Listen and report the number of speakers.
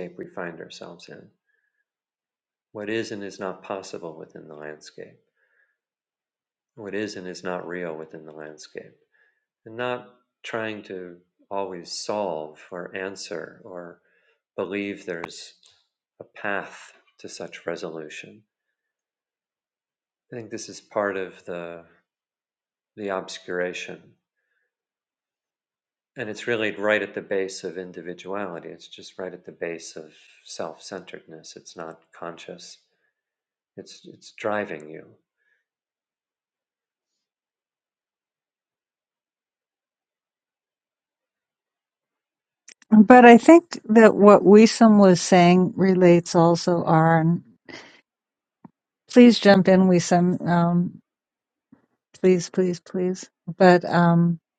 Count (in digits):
2